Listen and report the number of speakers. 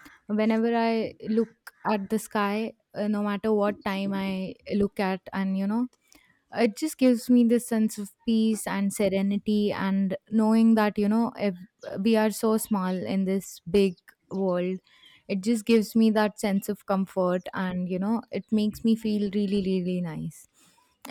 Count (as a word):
one